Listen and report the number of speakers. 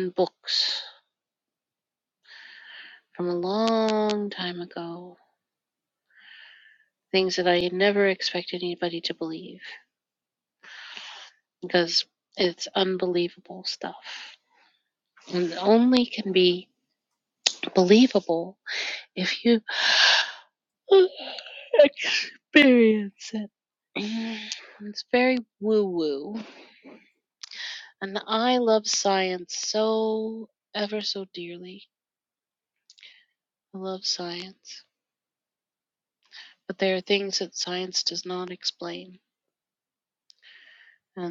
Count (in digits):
1